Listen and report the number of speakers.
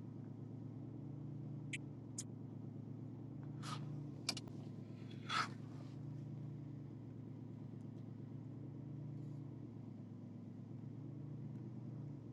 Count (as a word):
zero